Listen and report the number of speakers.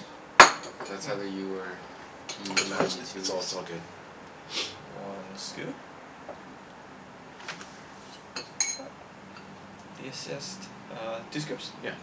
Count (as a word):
three